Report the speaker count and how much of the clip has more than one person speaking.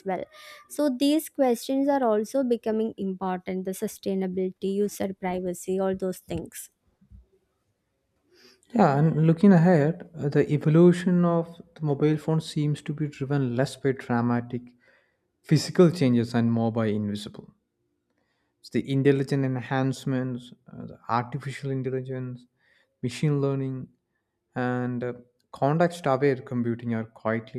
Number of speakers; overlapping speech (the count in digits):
2, no overlap